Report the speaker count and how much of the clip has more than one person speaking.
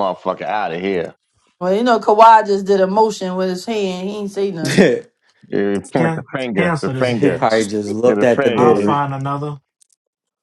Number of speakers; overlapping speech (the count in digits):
4, about 21%